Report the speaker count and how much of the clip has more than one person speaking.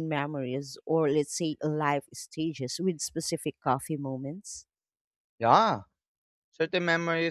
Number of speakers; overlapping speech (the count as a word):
two, no overlap